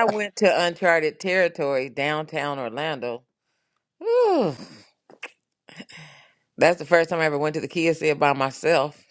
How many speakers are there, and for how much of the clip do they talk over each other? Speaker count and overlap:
one, no overlap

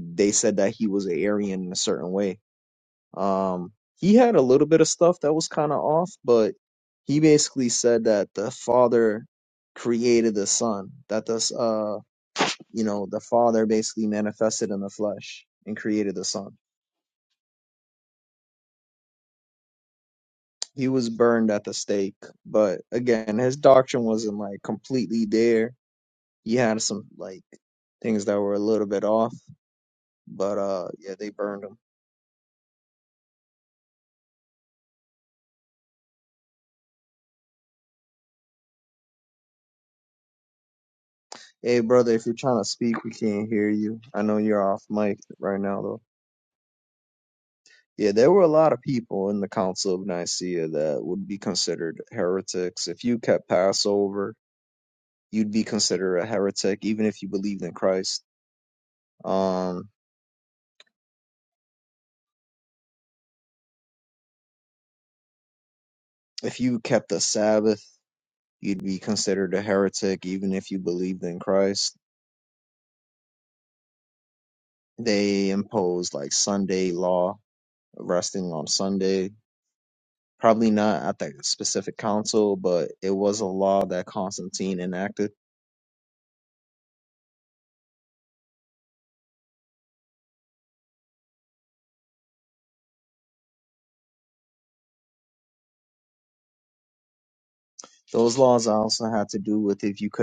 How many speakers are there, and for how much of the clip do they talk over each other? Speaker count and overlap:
one, no overlap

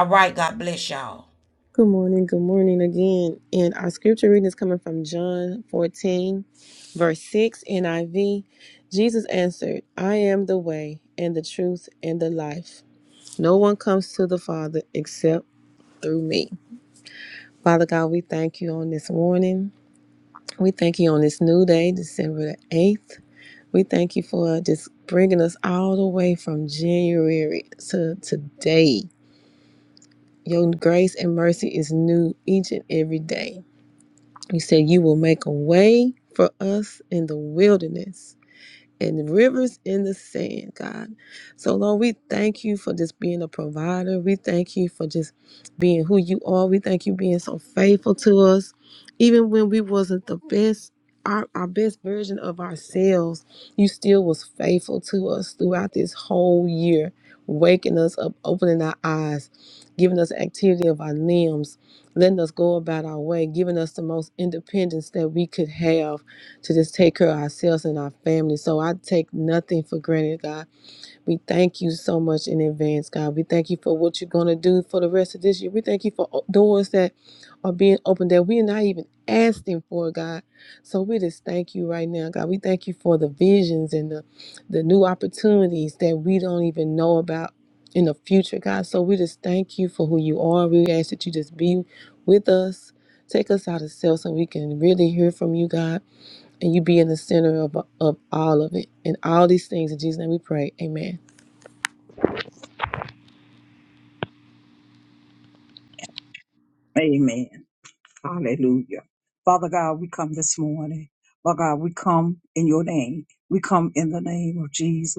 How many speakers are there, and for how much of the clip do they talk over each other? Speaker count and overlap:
three, no overlap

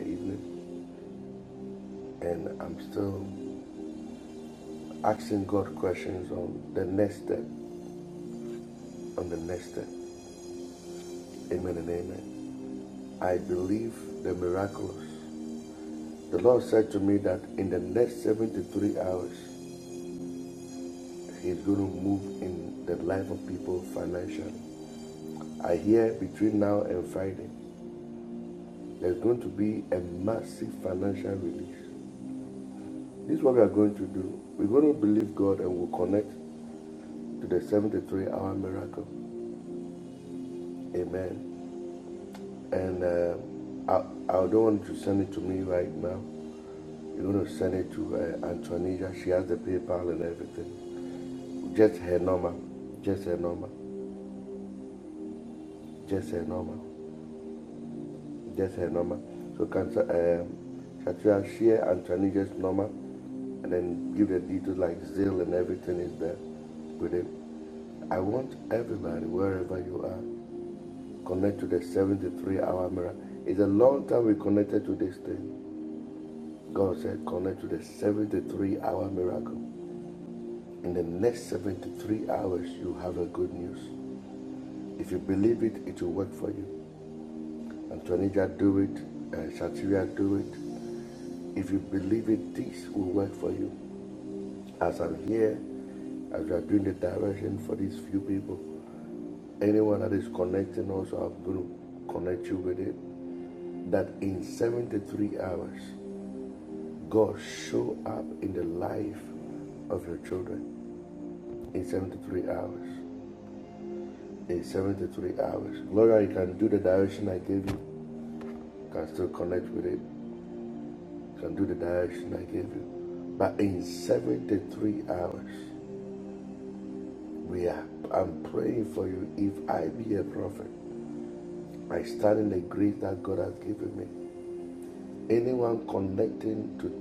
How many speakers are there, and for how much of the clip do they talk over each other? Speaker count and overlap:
one, no overlap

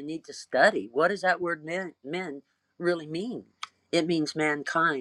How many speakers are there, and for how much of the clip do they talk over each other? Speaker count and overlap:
one, no overlap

